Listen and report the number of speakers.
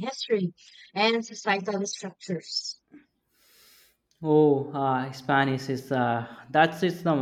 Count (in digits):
2